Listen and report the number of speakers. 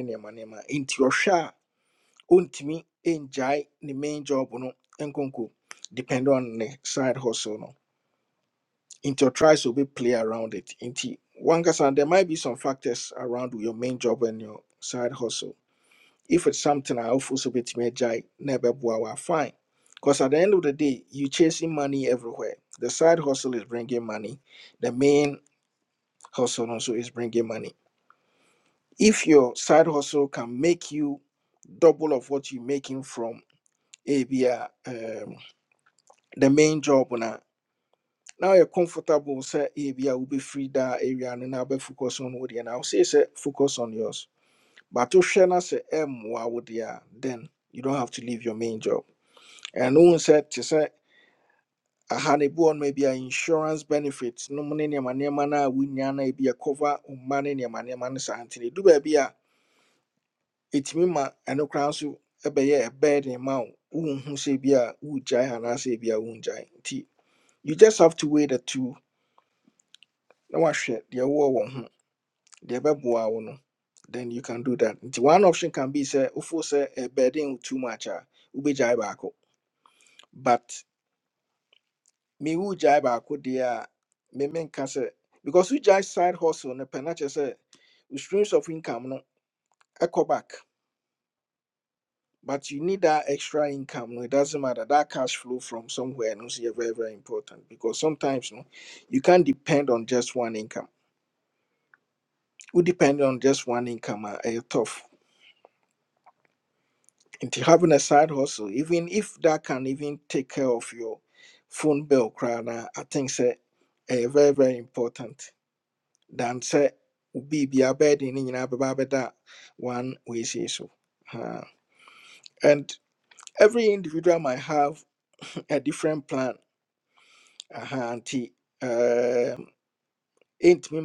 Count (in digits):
1